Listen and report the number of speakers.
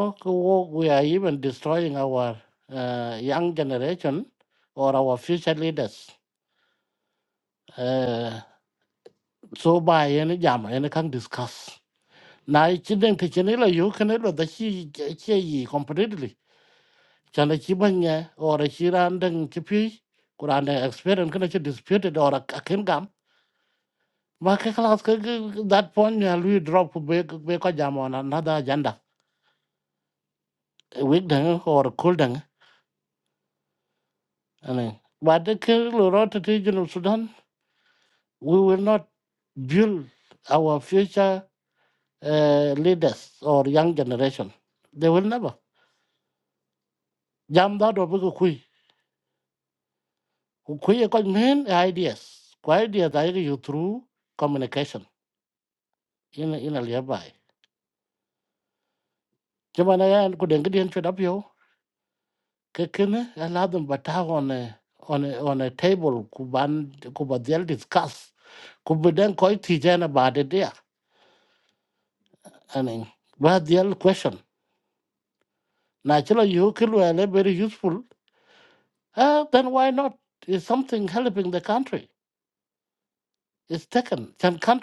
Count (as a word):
one